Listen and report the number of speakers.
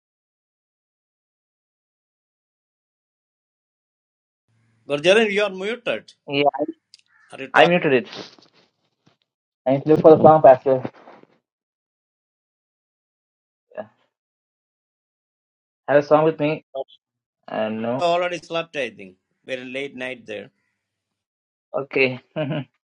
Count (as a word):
two